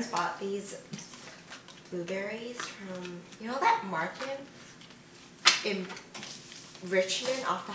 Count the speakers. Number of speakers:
1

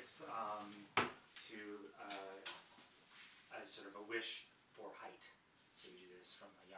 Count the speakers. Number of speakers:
1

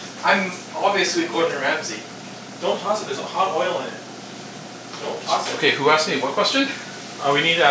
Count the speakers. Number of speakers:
3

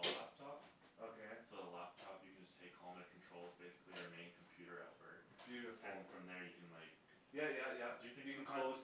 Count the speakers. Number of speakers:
2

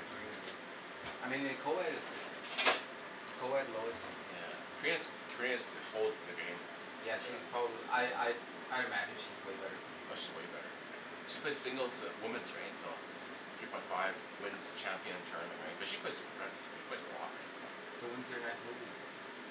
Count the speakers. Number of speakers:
2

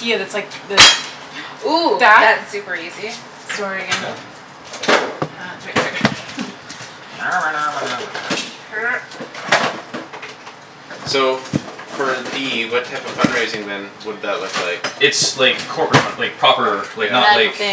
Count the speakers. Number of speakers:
4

